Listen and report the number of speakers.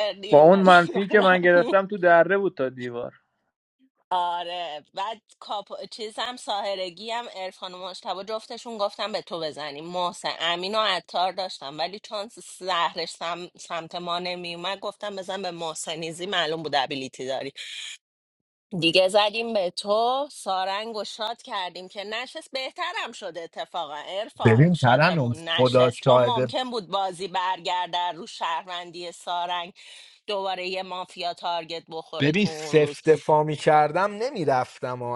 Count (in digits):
3